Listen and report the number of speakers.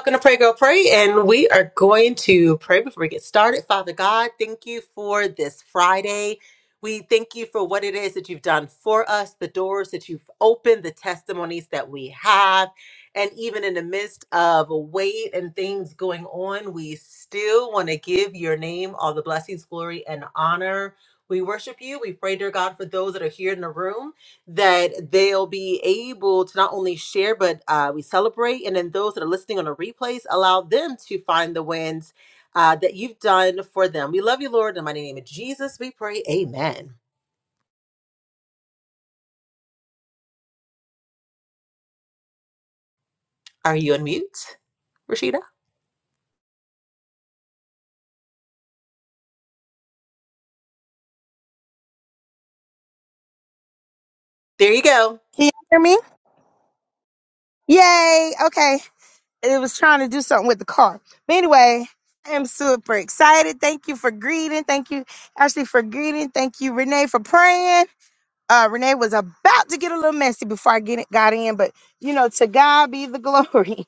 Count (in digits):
2